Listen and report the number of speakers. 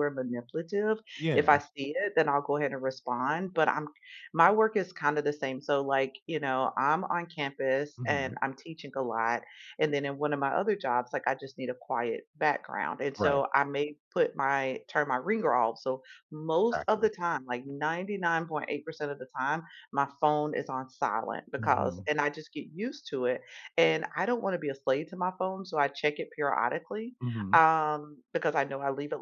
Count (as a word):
two